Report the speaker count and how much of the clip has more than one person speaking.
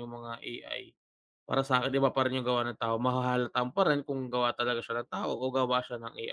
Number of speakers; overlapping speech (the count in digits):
1, no overlap